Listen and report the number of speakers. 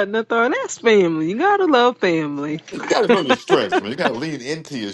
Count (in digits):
2